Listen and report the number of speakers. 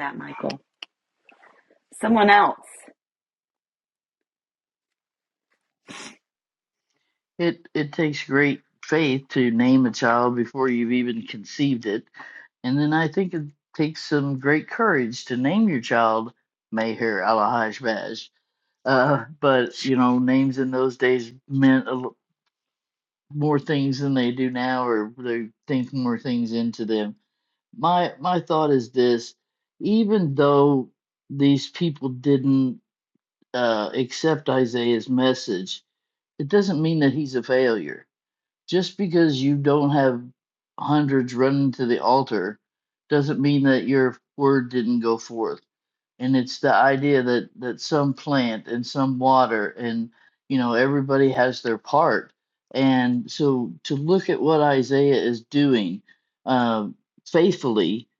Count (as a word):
two